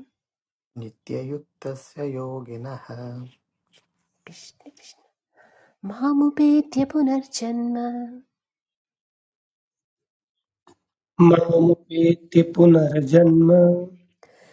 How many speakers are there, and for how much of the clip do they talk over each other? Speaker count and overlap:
3, no overlap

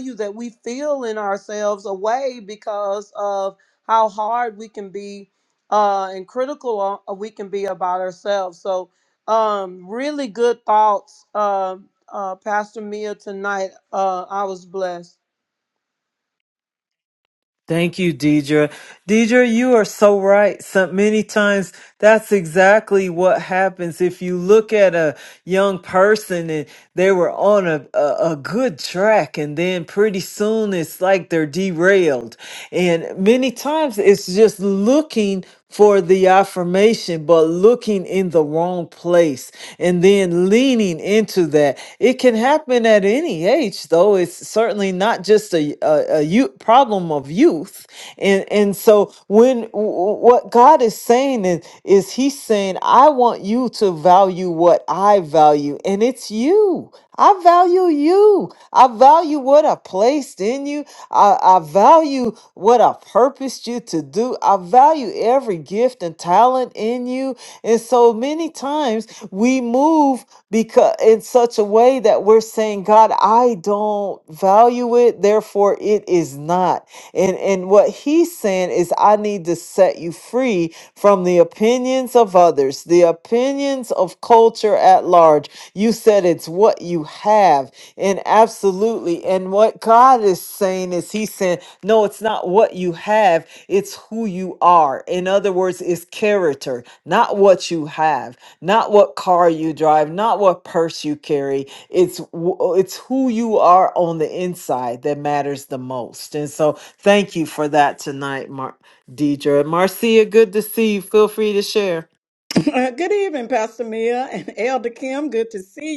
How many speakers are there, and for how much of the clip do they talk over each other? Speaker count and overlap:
3, no overlap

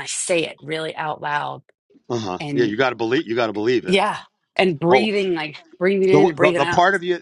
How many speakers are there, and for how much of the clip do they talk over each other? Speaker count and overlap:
2, about 19%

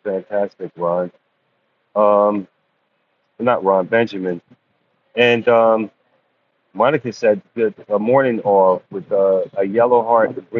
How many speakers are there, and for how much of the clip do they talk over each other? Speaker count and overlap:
1, no overlap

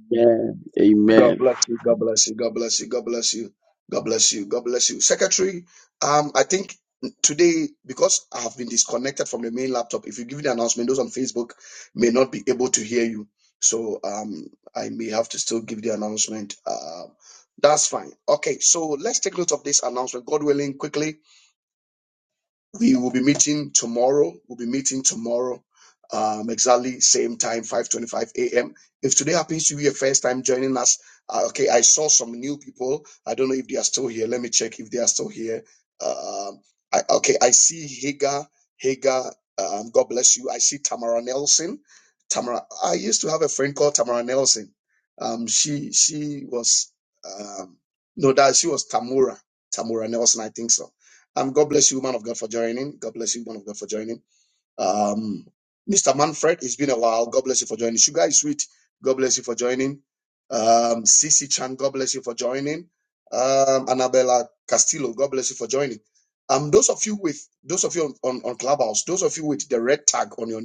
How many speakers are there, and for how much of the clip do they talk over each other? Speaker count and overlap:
2, under 1%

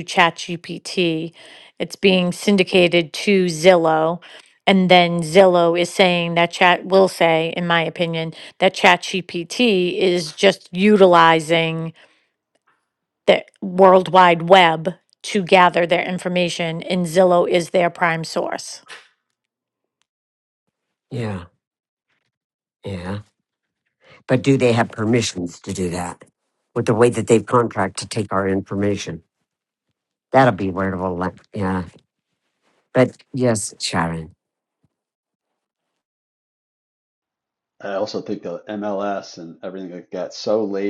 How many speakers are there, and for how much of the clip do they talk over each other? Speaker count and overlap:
3, no overlap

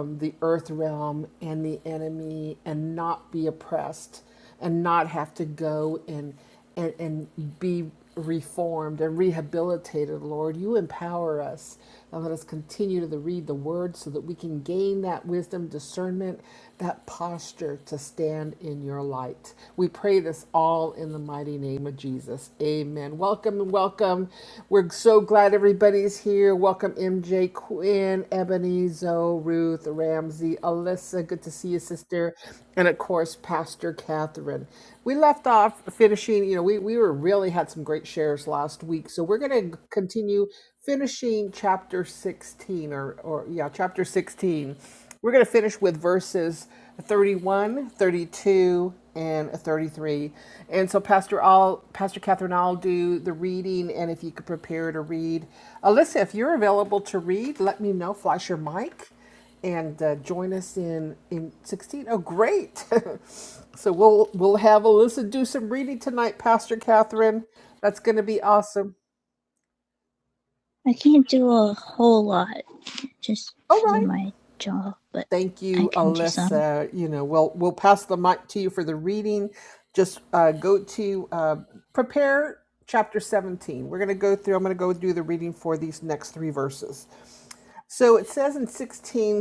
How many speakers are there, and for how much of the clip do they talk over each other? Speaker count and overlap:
2, about 1%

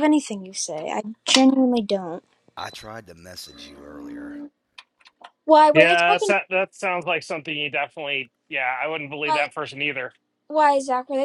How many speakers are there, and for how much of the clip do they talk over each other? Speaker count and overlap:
3, about 7%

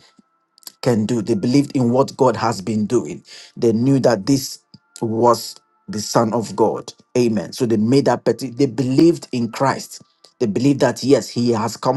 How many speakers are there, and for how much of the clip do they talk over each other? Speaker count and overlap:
1, no overlap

